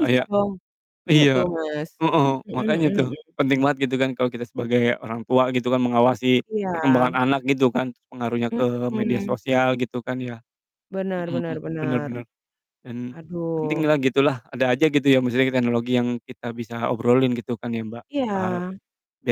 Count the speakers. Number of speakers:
two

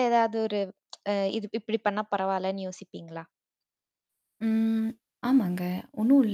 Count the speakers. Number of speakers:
two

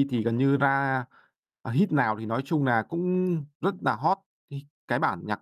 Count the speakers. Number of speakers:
one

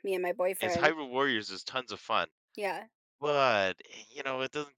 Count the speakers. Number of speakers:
two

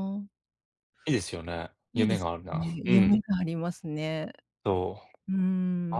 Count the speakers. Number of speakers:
two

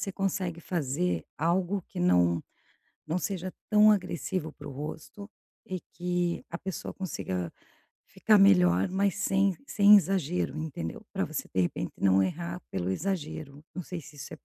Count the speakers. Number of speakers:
one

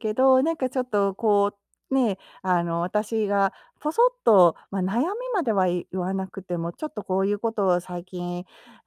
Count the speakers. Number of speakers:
one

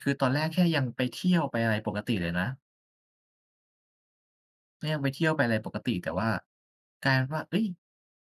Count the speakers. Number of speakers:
one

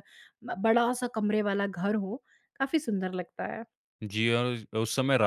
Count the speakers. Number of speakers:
two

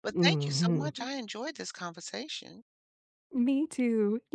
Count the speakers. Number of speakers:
two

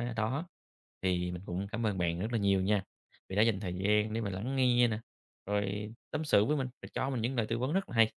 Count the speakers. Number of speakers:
one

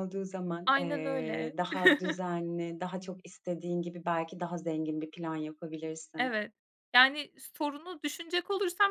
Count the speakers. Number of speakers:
two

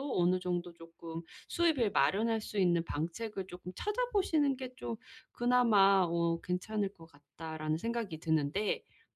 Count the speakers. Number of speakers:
one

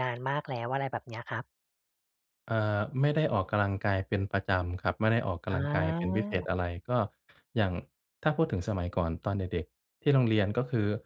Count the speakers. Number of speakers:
two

